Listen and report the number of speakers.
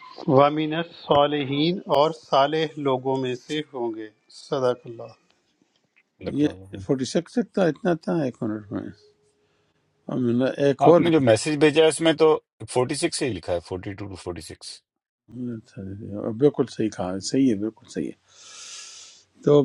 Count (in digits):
3